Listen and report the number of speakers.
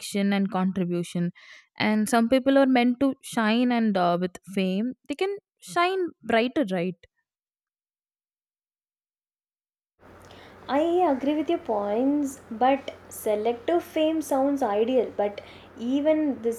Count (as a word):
two